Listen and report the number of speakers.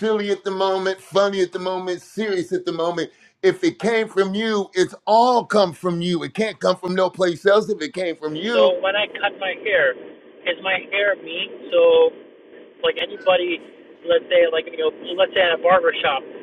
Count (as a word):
two